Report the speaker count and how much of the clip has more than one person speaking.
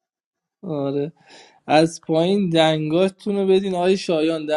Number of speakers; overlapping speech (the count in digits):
1, no overlap